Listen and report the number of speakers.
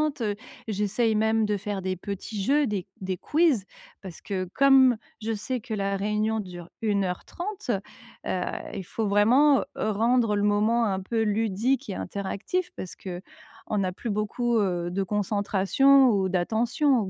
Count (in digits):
1